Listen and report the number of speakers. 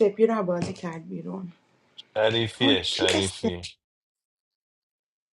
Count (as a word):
two